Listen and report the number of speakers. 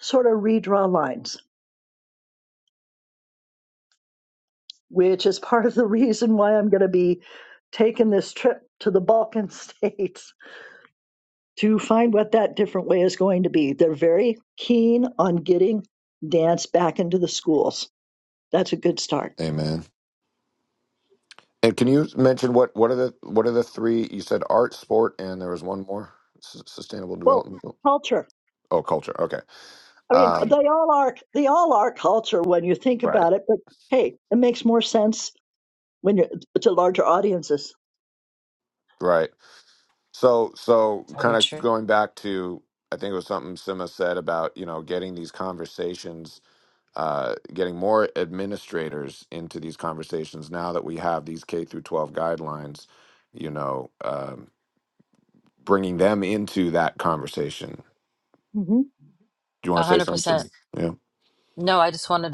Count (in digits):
3